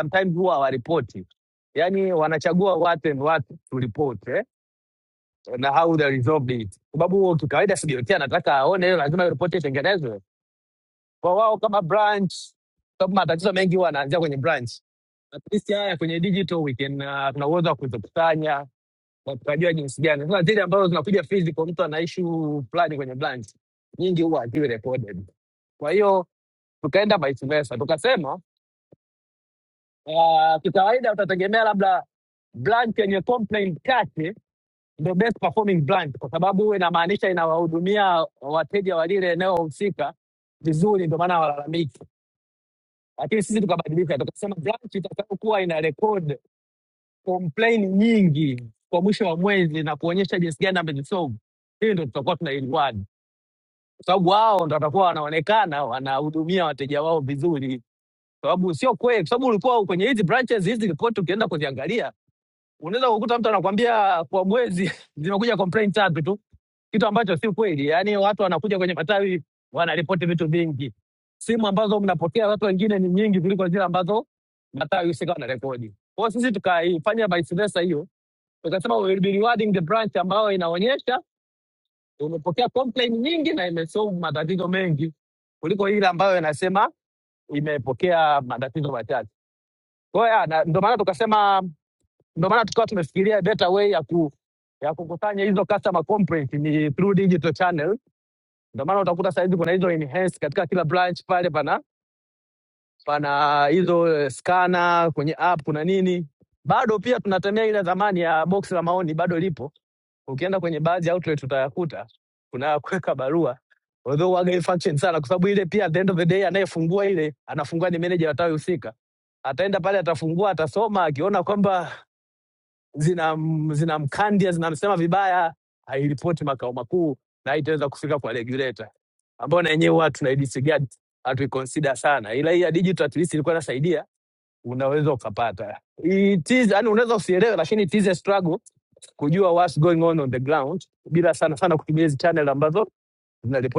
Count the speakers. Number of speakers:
one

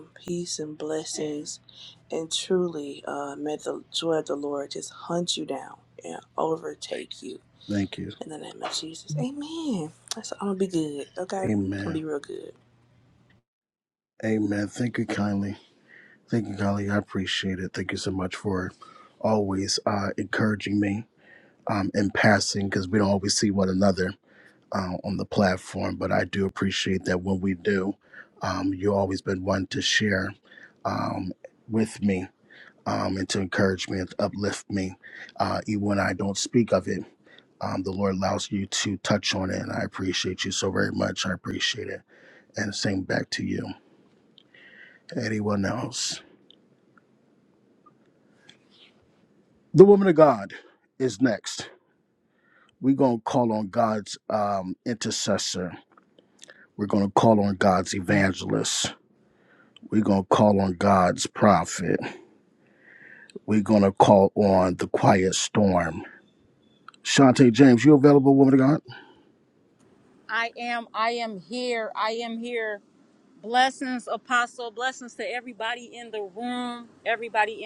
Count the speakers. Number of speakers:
three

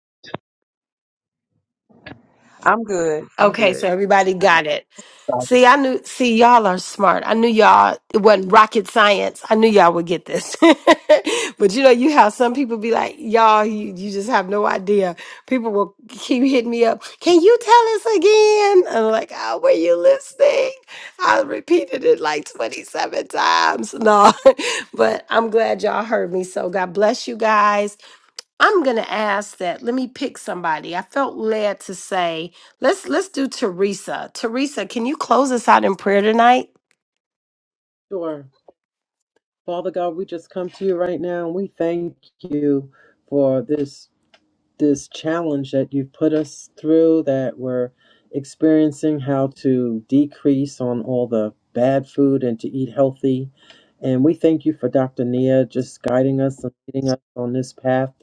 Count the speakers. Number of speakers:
three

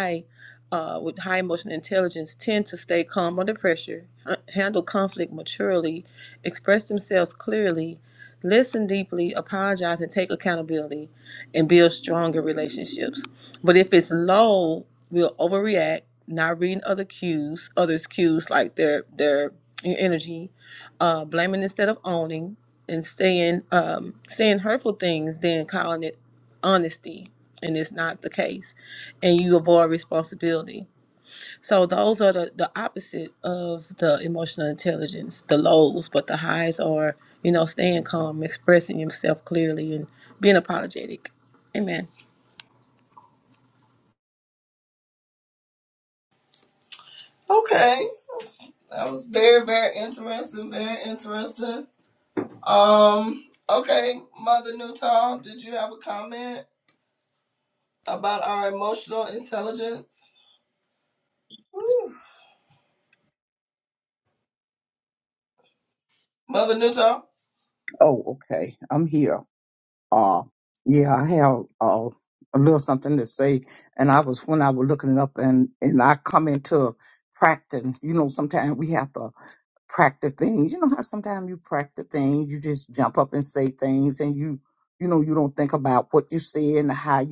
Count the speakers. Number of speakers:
three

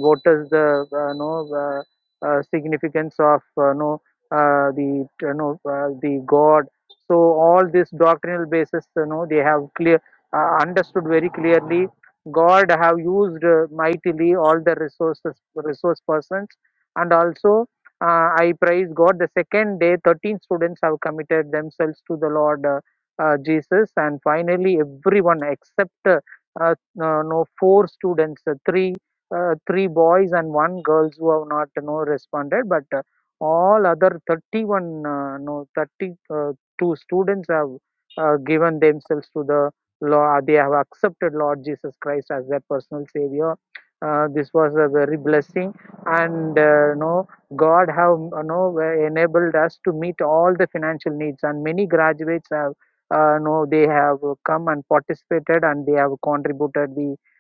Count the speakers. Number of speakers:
one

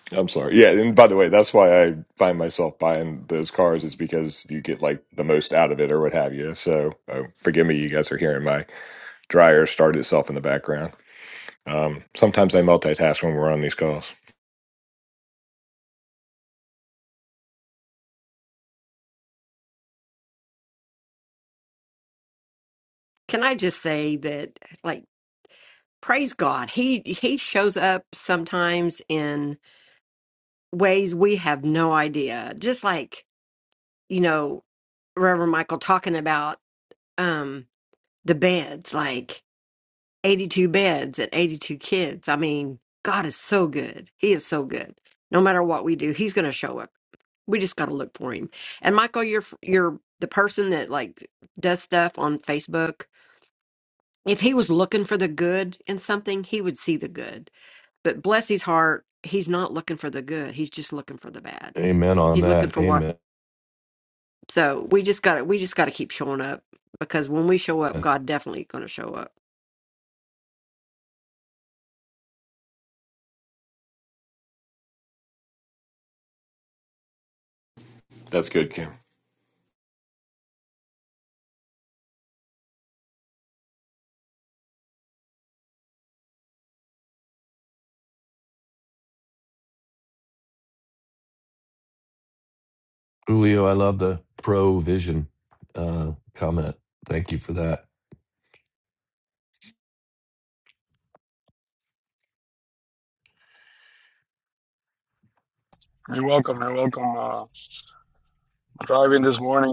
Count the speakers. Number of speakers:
four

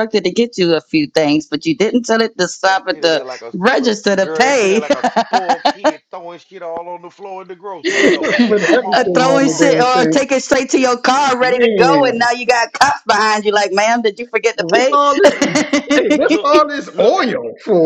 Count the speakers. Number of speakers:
three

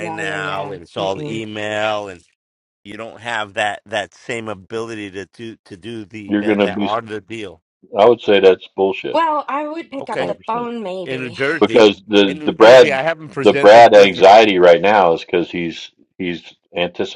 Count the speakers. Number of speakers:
three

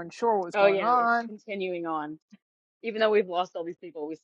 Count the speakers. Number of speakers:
two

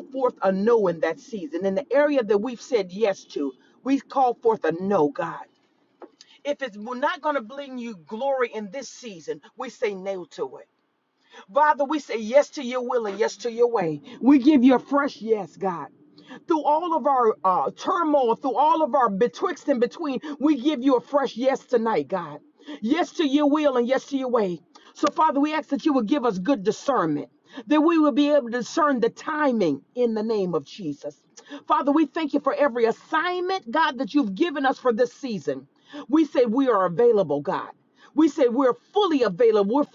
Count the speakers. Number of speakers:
one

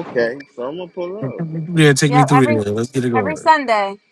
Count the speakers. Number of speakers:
three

